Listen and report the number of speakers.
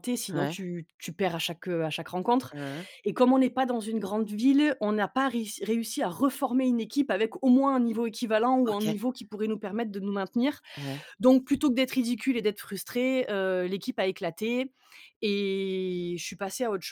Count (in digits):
2